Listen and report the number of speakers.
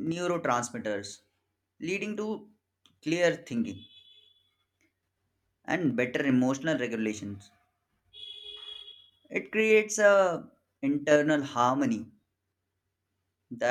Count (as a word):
one